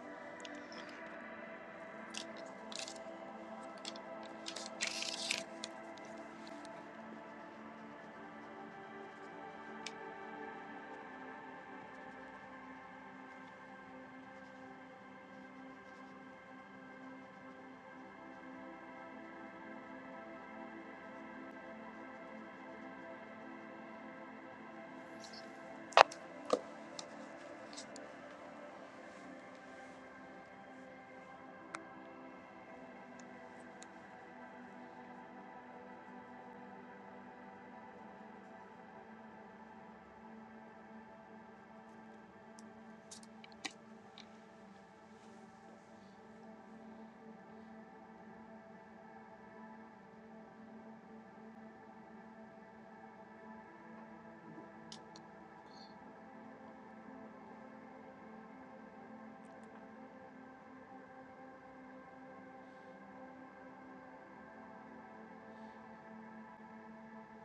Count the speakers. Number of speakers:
zero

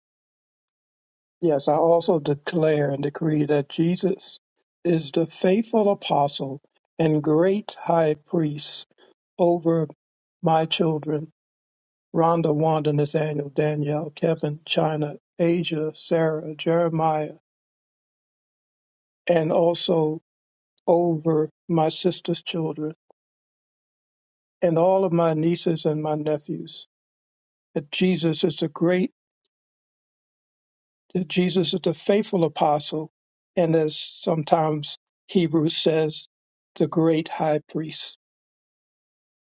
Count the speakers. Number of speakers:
one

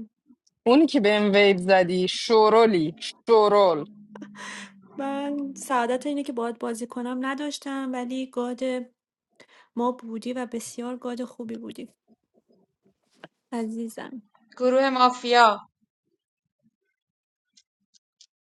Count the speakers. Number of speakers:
three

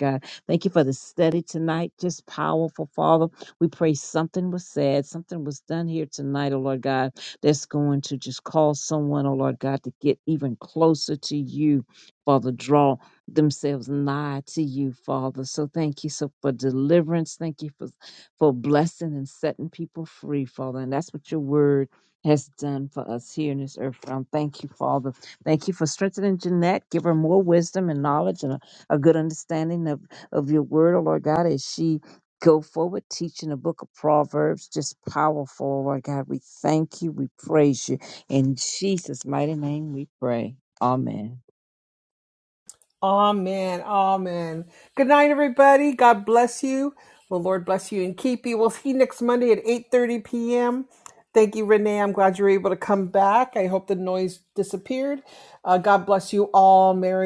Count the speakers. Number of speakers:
two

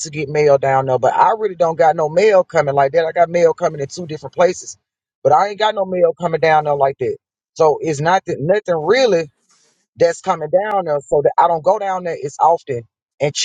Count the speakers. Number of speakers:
one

